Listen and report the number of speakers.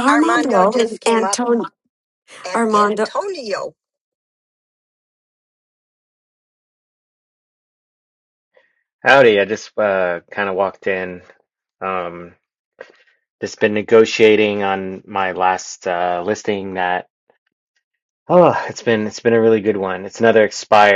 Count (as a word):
three